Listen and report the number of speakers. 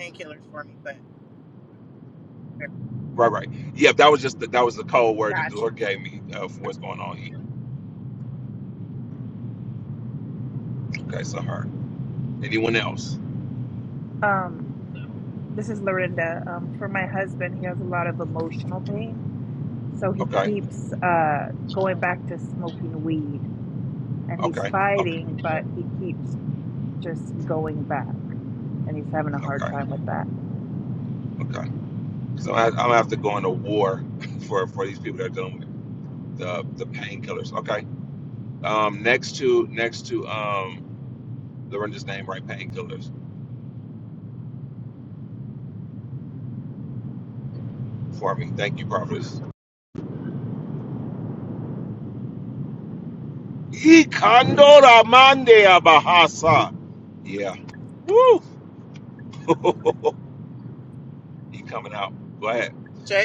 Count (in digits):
3